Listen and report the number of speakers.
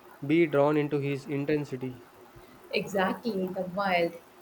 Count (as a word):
two